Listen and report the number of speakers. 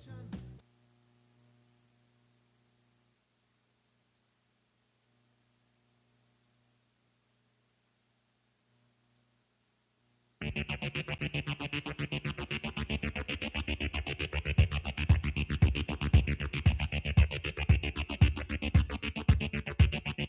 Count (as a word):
zero